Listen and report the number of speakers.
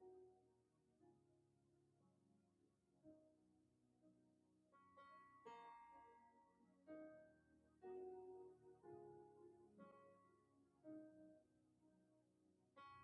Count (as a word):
zero